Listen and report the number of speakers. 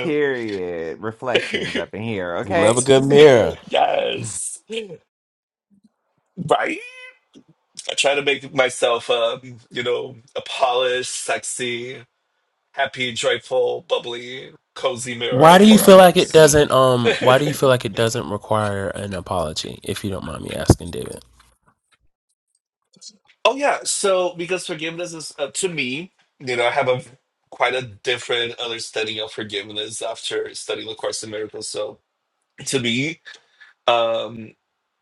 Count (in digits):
3